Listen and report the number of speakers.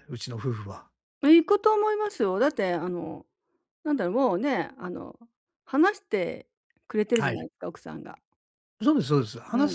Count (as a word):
two